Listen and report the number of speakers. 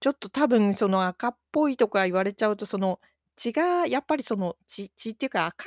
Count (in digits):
1